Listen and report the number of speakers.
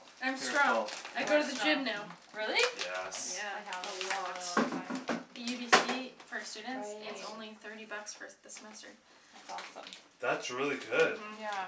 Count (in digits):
4